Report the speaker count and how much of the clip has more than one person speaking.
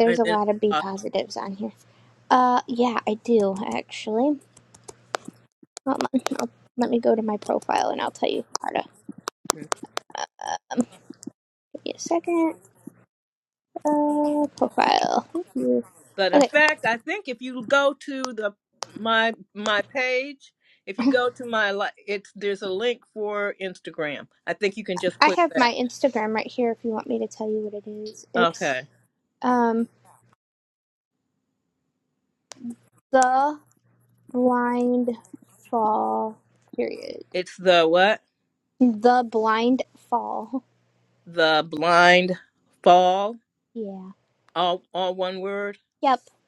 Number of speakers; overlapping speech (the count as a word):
two, about 3%